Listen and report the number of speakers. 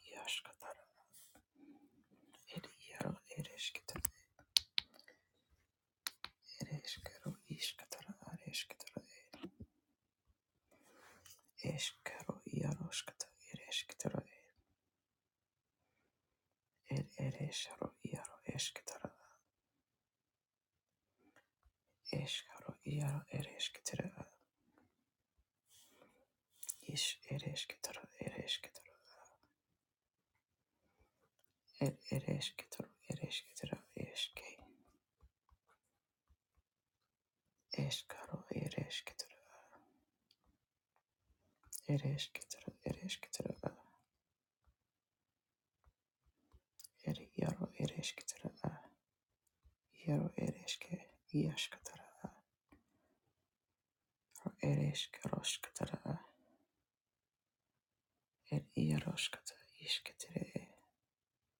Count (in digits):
1